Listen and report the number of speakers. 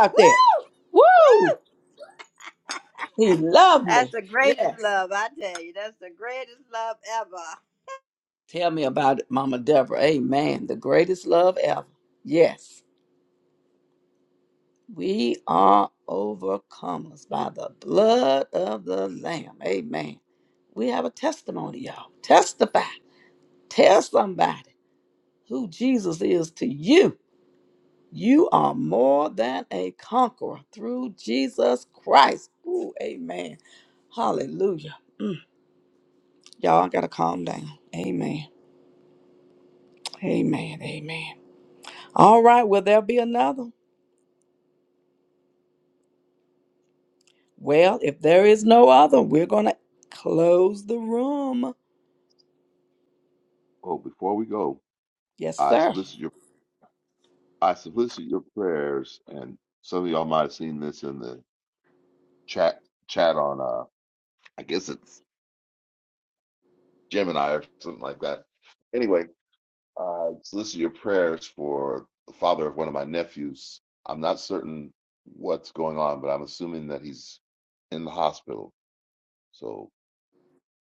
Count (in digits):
3